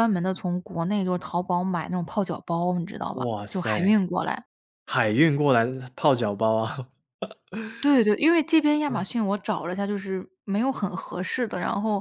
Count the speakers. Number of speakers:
two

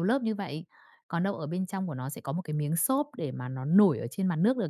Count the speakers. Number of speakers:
one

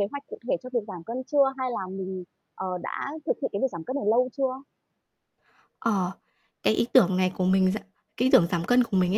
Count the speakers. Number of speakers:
two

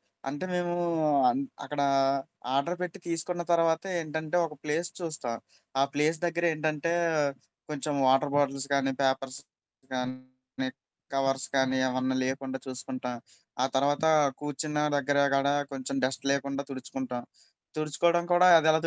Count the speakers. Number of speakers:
one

